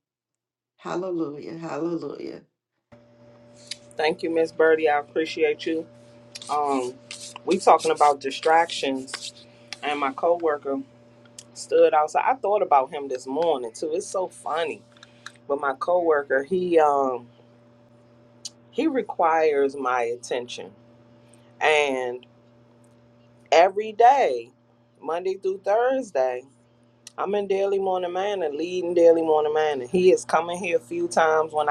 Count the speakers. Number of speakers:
2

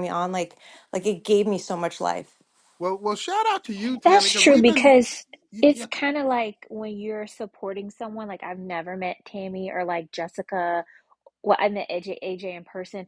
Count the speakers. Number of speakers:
3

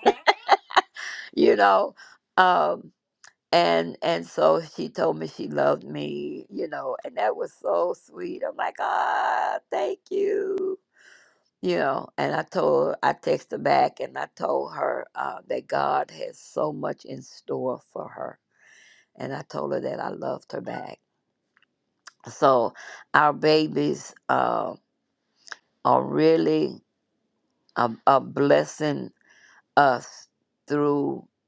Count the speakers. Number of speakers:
1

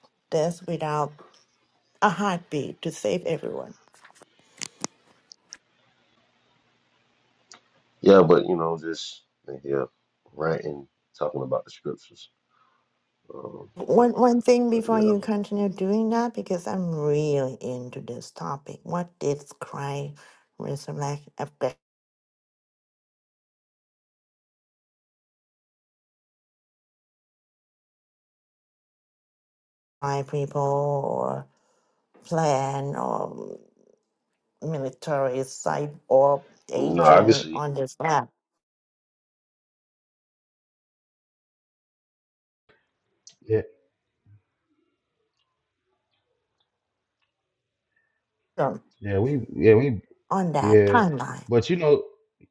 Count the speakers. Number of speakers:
3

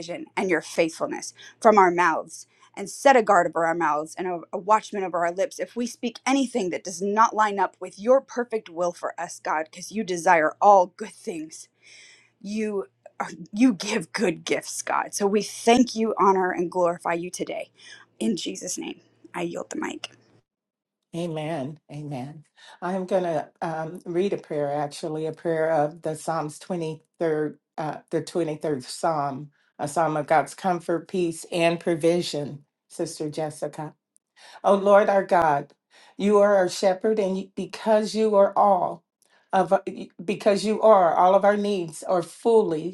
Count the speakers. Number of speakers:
2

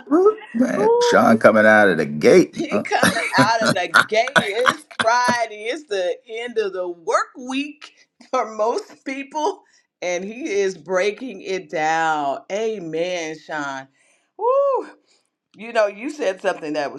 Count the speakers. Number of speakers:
2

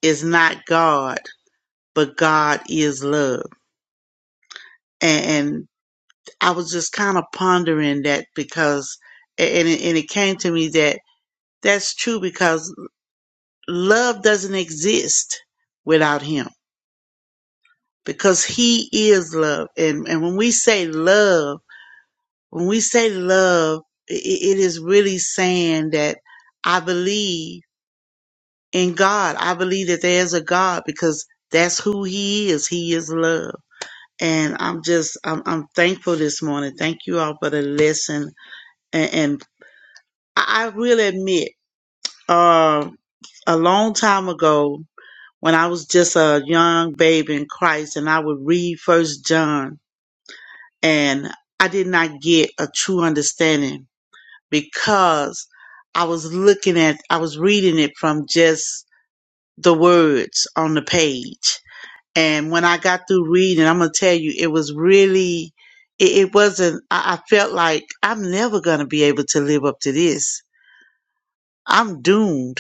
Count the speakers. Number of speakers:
1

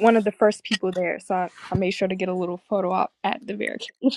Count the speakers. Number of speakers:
1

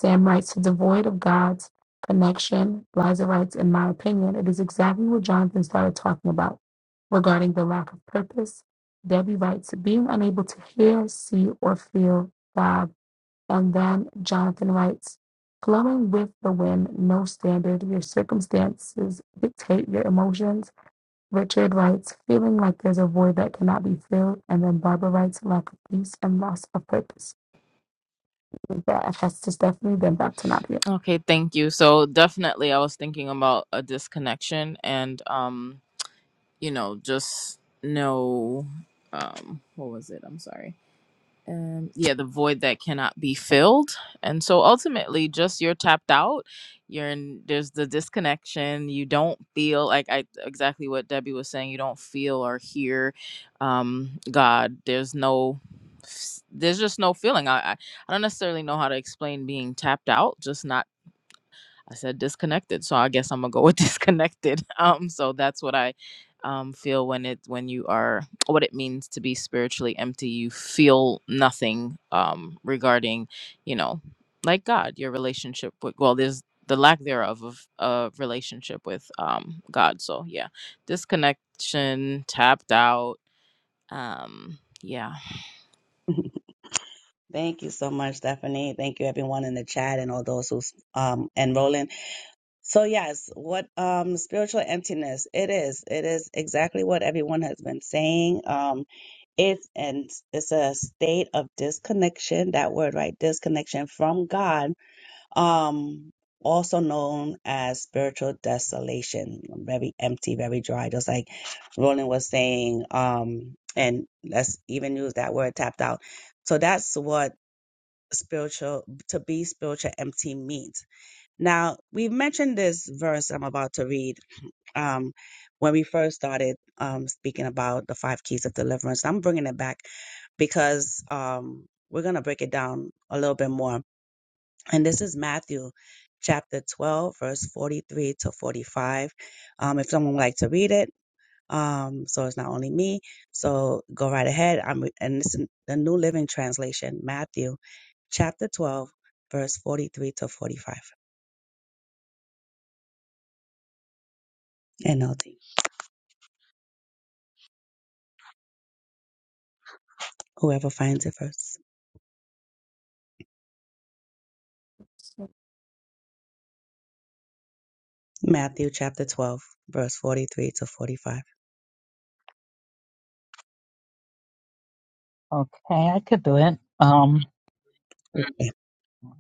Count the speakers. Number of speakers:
4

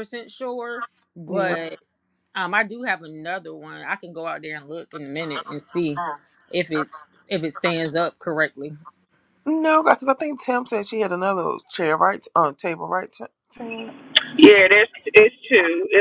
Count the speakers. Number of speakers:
3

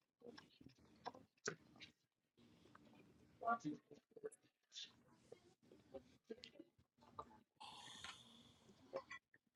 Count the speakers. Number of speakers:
0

